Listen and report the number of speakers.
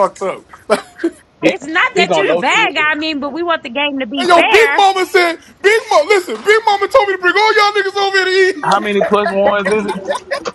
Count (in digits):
3